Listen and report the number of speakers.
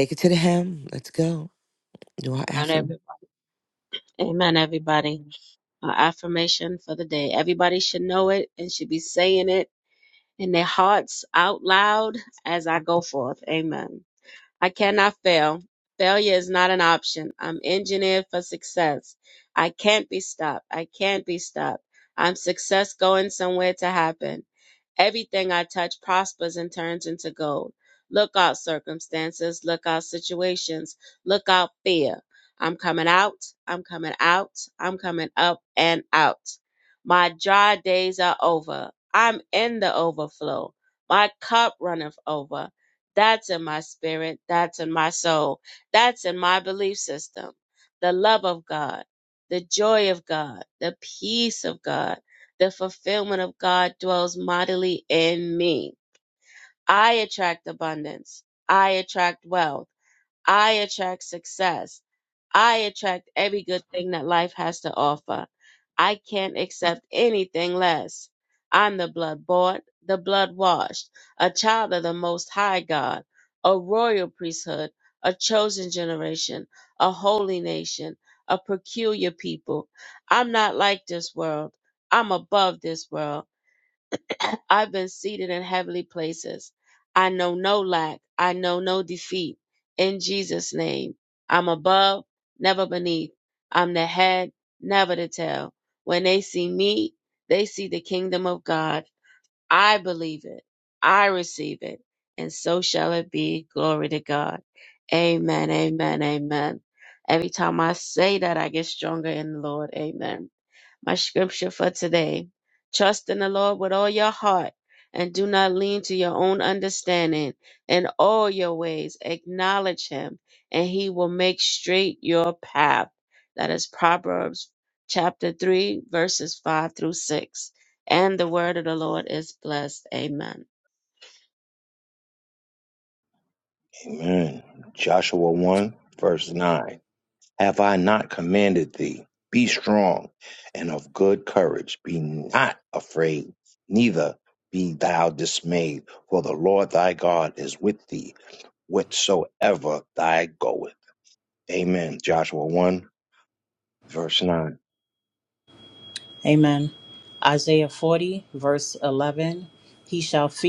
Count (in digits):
4